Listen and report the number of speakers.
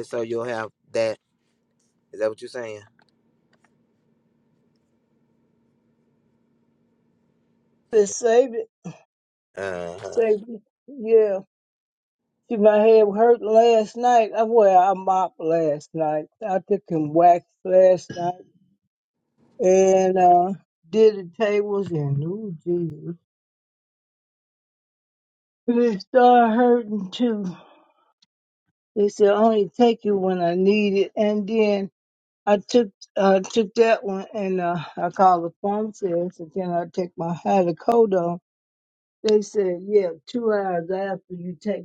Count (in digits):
2